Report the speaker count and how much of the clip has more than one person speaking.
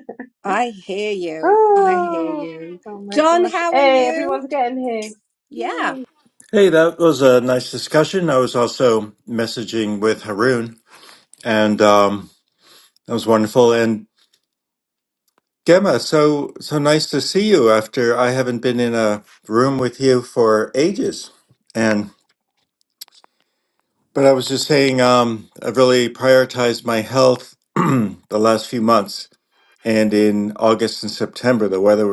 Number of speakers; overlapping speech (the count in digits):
3, about 9%